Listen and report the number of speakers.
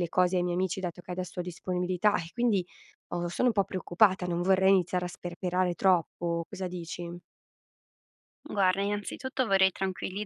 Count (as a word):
two